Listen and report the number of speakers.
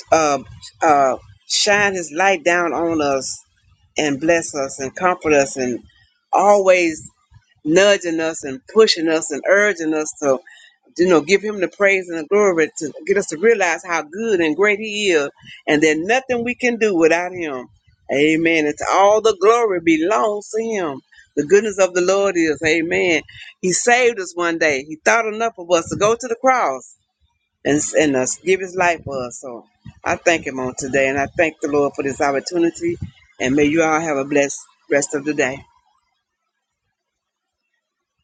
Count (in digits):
1